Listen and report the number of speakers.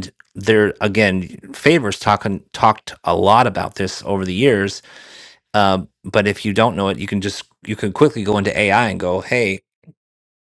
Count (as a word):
one